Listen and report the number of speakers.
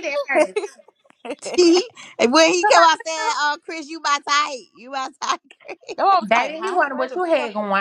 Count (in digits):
3